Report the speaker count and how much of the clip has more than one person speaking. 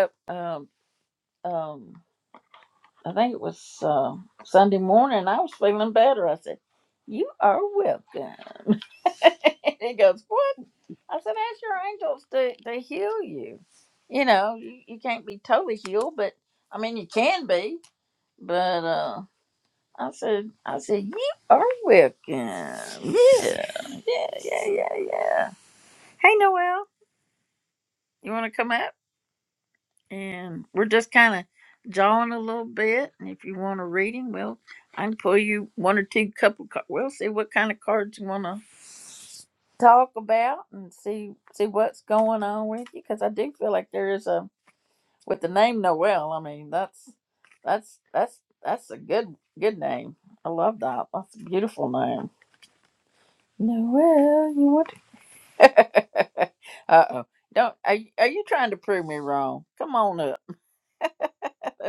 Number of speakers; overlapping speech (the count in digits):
1, no overlap